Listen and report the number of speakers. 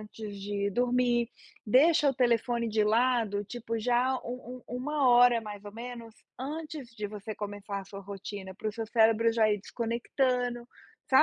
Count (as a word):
one